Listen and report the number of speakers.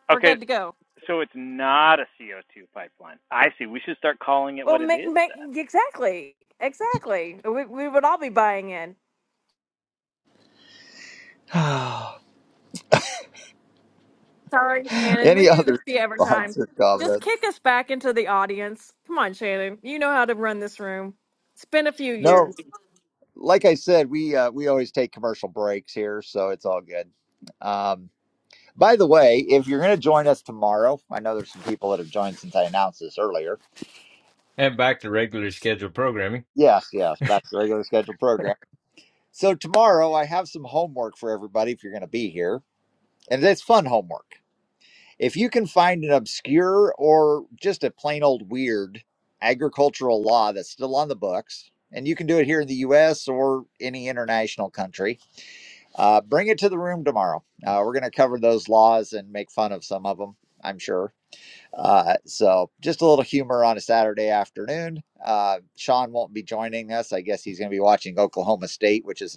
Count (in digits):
4